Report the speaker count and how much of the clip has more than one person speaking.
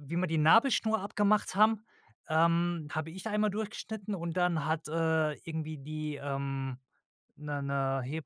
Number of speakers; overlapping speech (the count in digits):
1, no overlap